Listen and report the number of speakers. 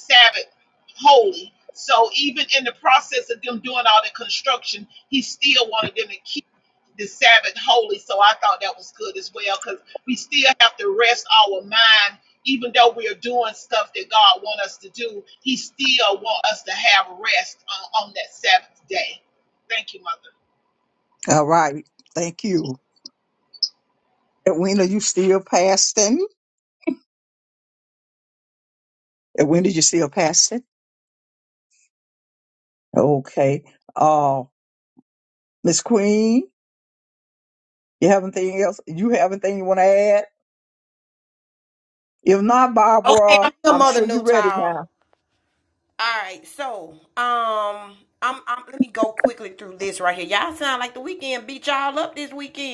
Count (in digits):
3